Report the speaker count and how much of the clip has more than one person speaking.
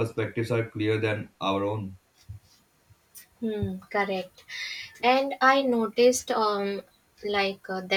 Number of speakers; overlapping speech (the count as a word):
two, no overlap